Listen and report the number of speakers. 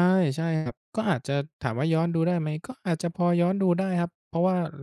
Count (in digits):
1